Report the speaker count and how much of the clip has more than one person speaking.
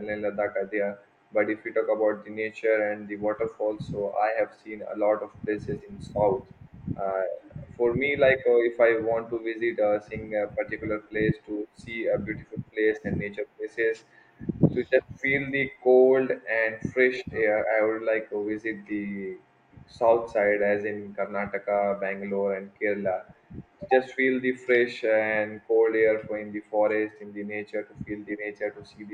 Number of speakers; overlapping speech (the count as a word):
one, no overlap